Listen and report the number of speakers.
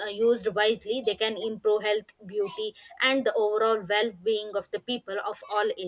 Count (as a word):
one